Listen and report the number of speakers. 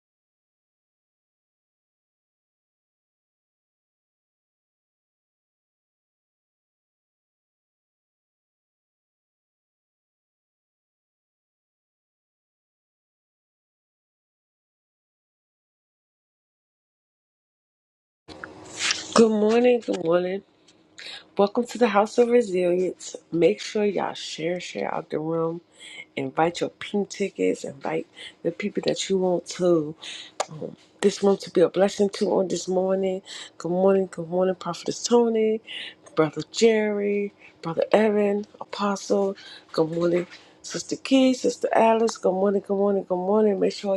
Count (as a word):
one